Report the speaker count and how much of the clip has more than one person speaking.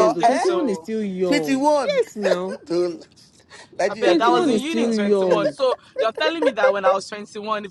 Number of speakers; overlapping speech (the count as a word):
three, about 42%